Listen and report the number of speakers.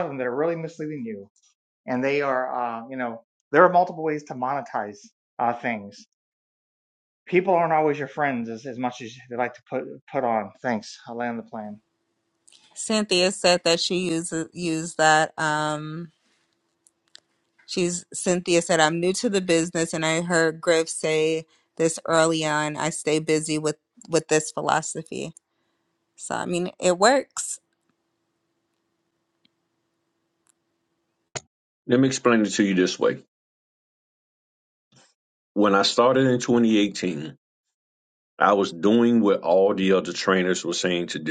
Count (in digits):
3